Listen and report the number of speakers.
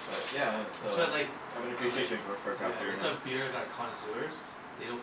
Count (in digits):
2